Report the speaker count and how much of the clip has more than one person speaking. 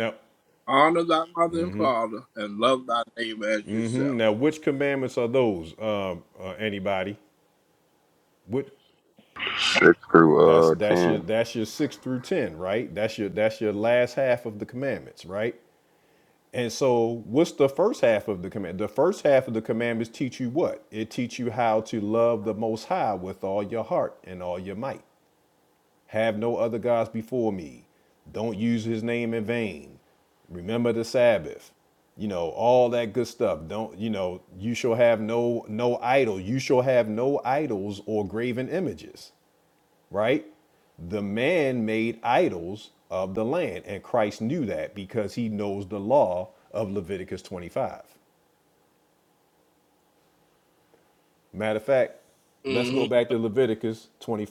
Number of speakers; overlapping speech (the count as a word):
three, about 3%